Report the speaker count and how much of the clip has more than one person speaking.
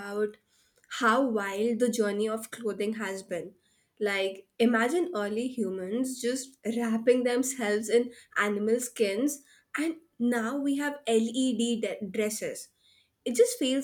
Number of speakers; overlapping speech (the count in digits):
1, no overlap